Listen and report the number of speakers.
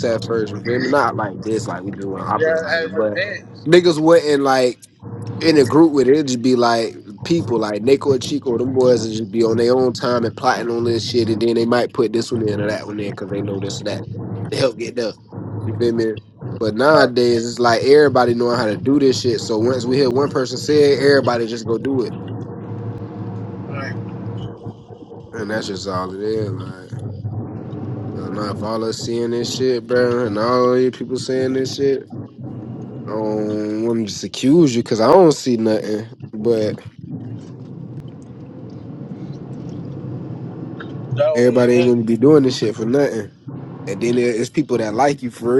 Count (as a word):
two